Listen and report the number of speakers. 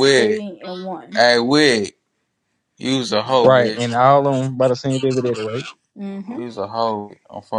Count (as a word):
three